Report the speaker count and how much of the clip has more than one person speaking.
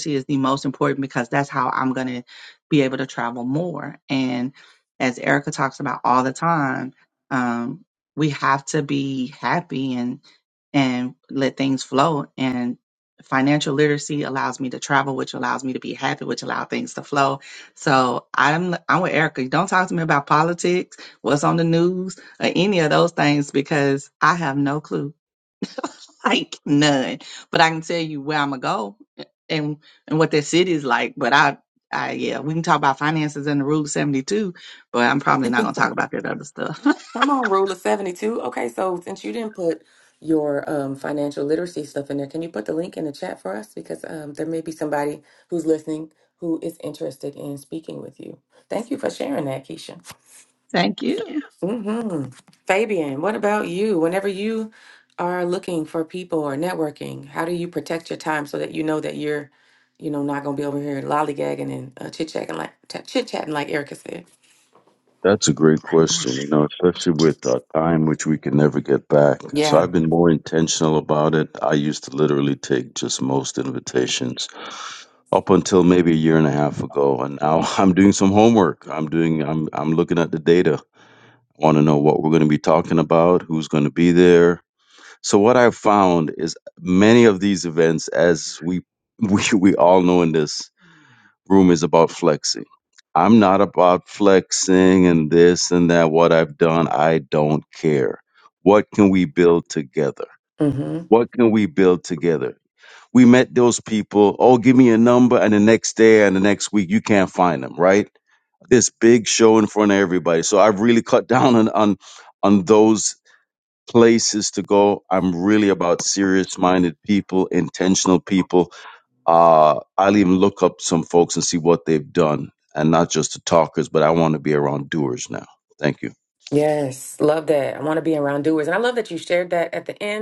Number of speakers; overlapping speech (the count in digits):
3, under 1%